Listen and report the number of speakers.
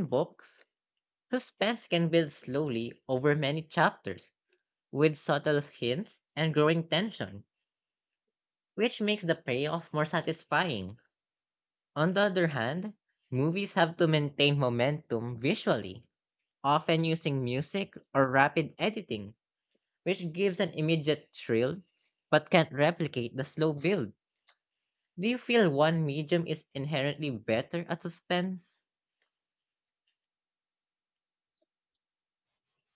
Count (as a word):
one